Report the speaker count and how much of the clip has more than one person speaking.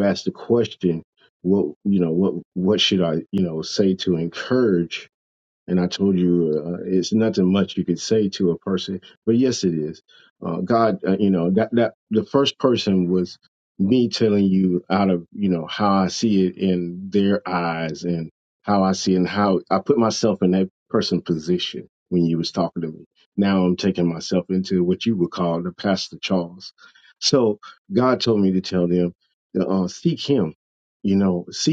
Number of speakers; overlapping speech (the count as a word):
one, no overlap